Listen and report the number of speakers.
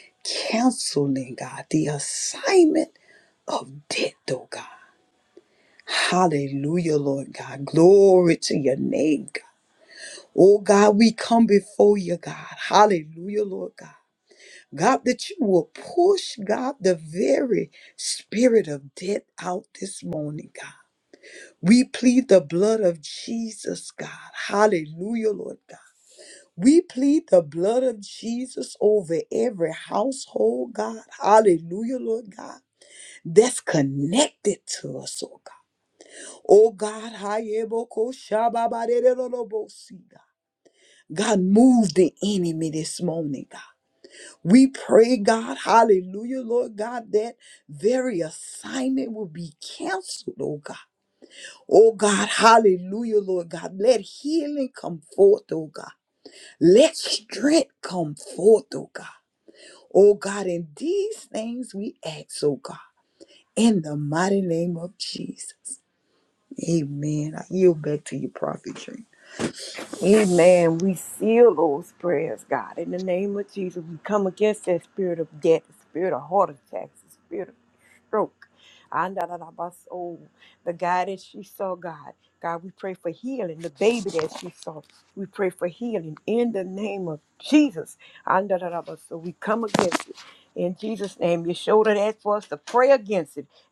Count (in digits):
2